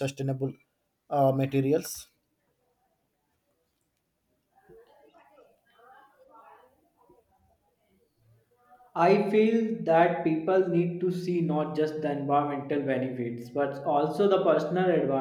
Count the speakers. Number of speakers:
2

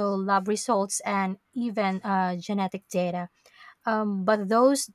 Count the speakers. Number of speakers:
1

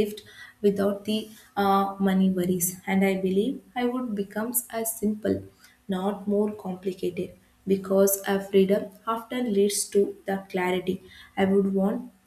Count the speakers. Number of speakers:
1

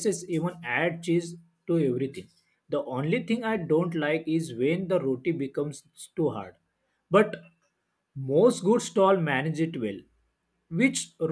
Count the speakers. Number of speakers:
1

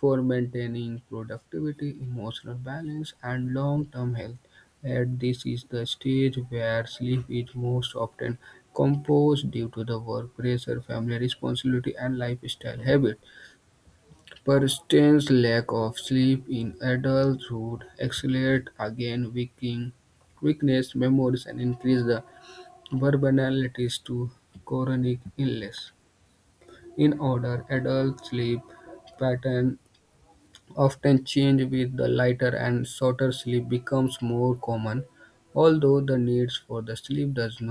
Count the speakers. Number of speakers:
1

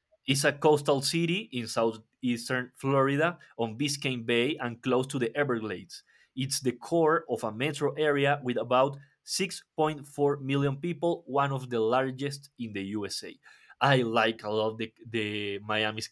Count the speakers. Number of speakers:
1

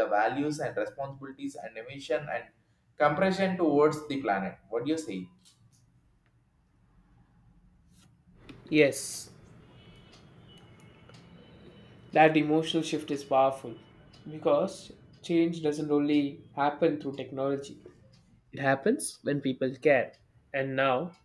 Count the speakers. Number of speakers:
2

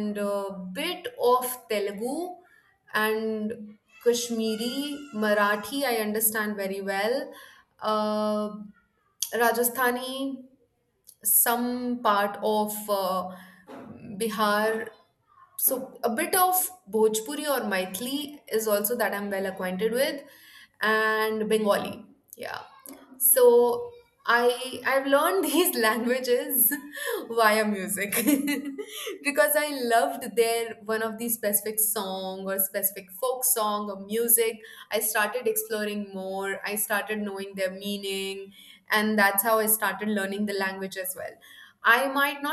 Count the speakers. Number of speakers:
1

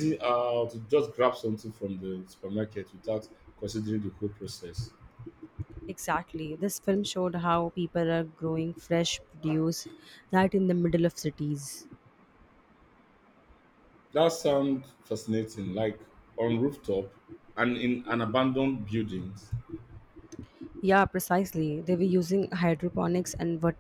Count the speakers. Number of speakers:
2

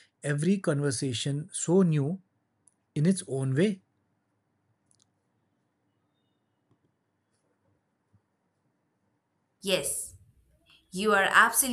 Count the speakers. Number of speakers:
2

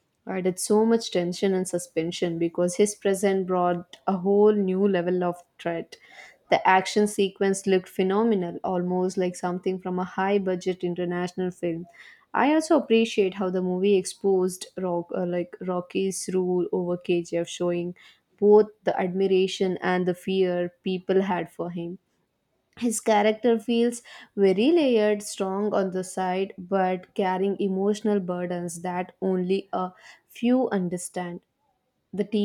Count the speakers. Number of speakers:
1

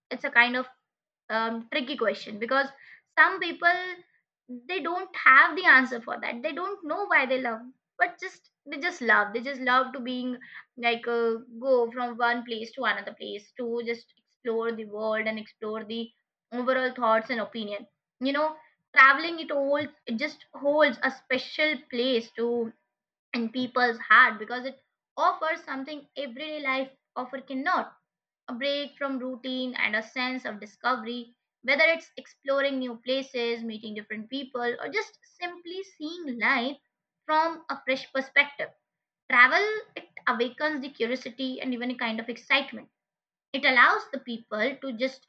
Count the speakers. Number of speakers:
1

